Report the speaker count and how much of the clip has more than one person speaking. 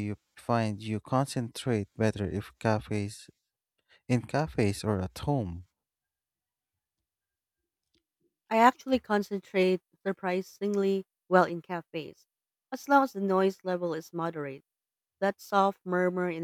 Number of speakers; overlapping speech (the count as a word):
two, no overlap